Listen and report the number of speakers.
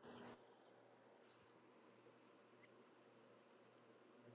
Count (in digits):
0